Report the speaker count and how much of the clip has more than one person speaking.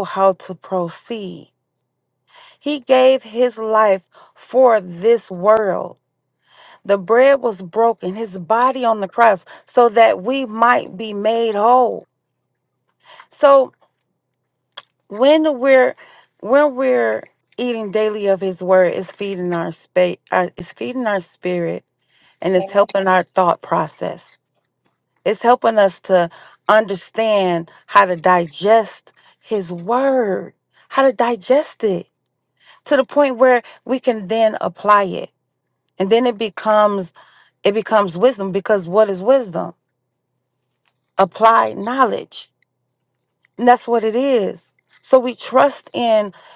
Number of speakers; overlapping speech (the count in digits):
1, no overlap